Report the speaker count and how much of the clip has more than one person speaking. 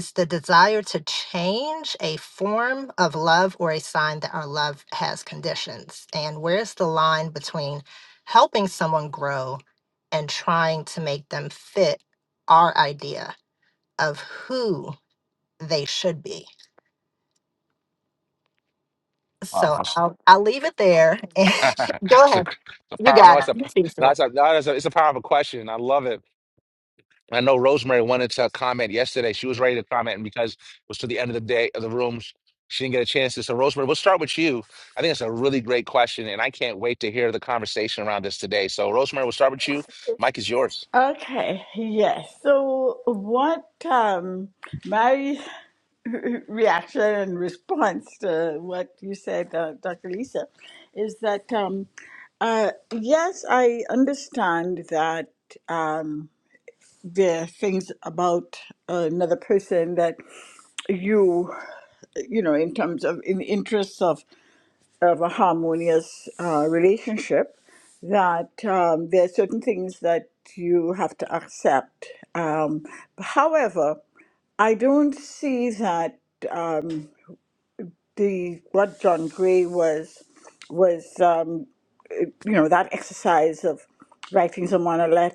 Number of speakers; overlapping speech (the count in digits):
3, about 2%